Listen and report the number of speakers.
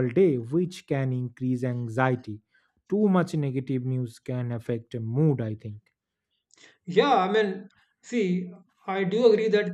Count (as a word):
two